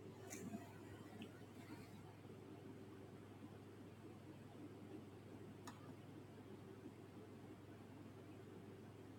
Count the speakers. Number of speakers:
0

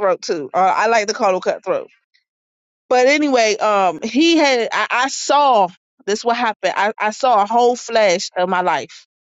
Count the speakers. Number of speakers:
1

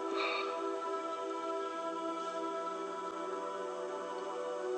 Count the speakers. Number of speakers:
0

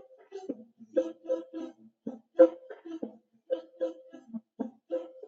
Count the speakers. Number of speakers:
0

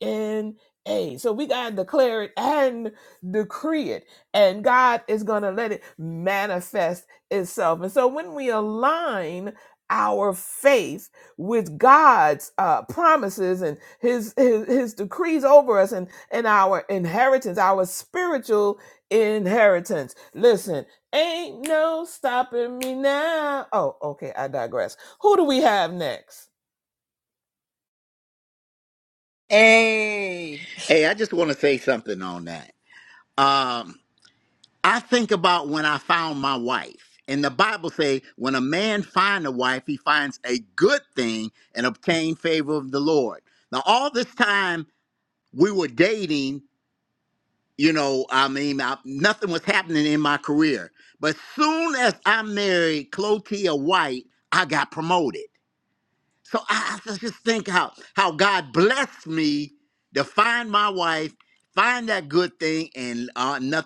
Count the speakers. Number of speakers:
3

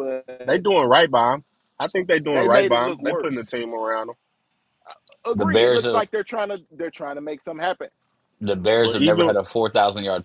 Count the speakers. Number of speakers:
3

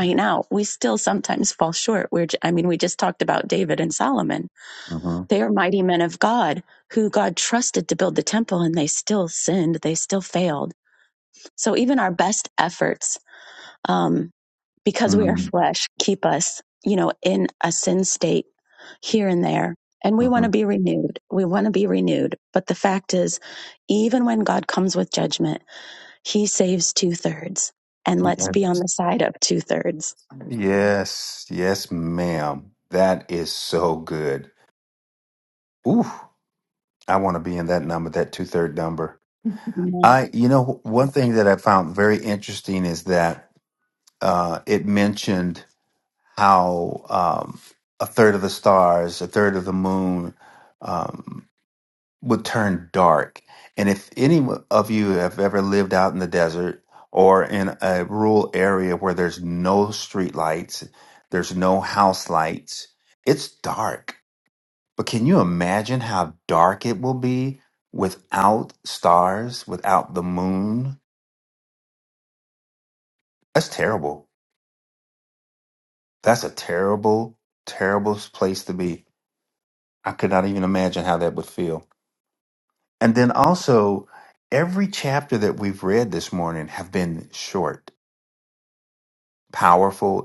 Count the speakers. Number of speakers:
2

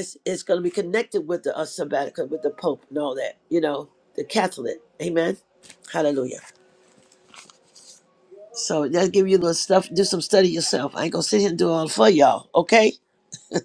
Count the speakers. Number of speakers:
1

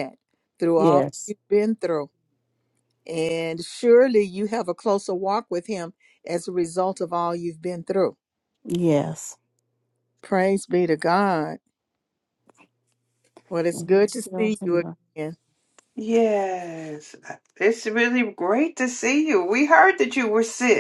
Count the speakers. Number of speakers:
3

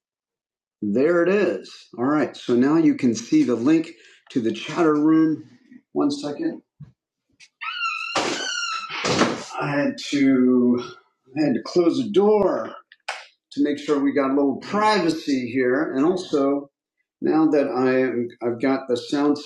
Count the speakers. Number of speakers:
1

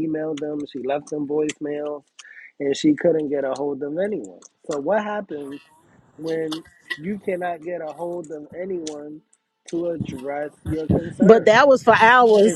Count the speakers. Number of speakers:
2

